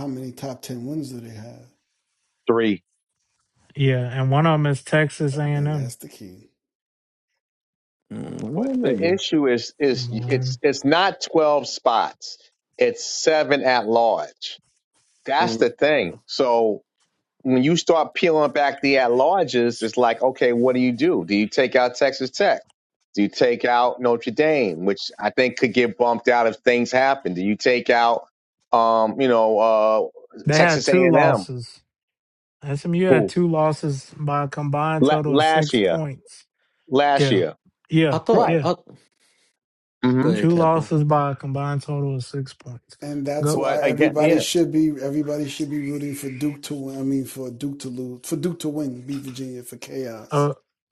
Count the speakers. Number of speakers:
four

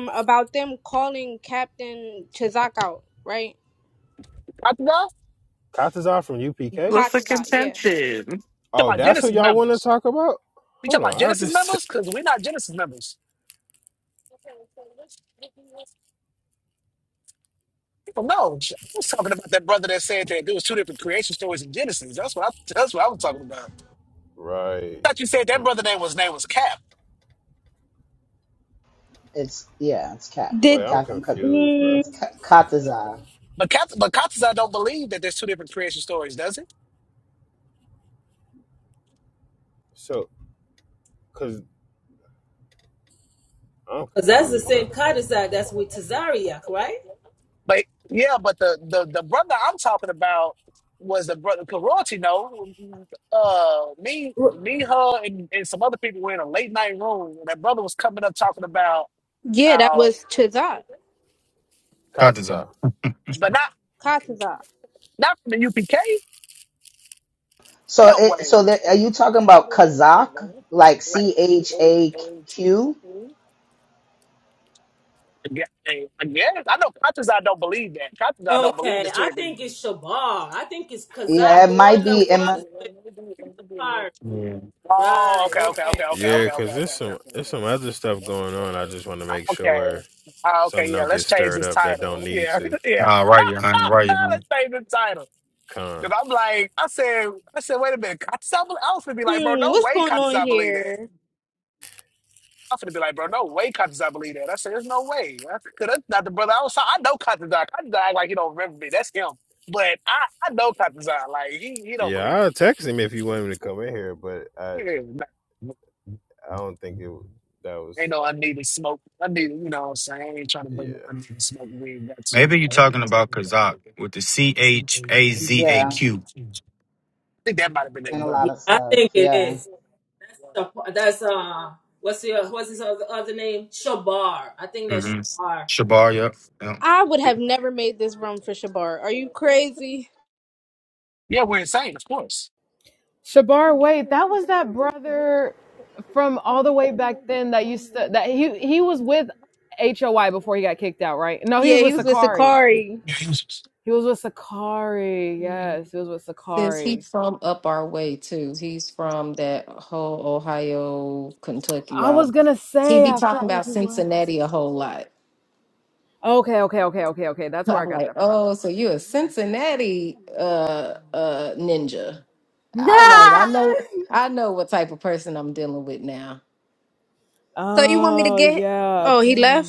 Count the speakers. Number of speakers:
nine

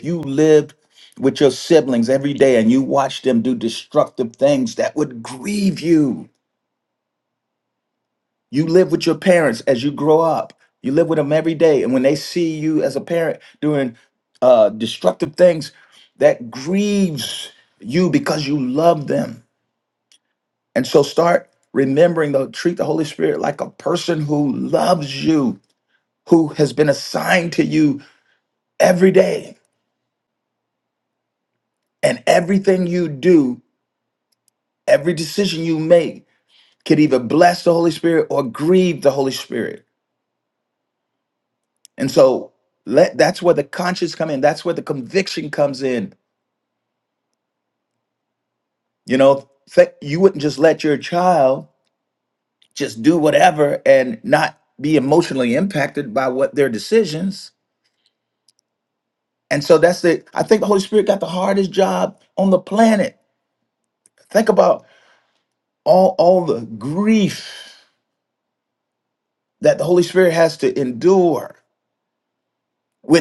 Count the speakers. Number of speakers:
one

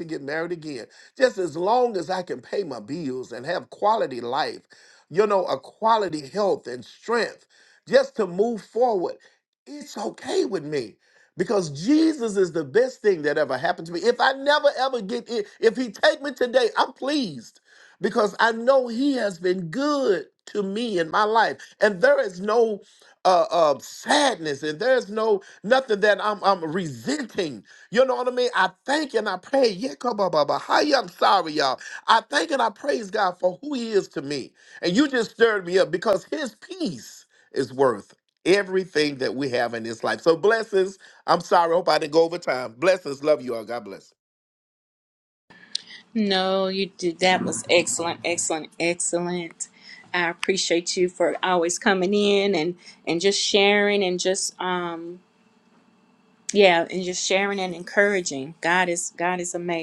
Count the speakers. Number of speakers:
two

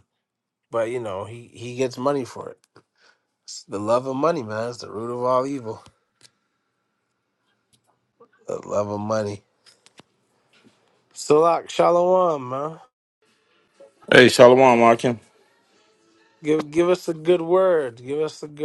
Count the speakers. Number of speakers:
two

